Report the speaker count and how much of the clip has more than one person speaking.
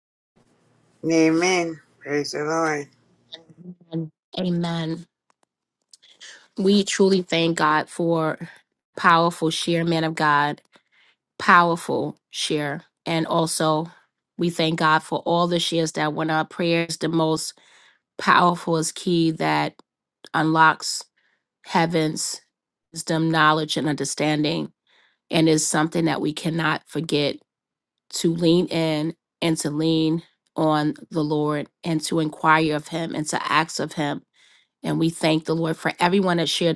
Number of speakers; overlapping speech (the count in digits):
2, no overlap